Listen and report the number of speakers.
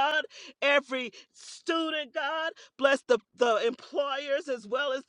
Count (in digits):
1